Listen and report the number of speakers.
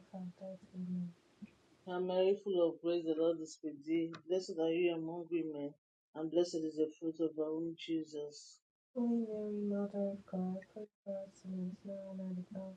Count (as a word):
two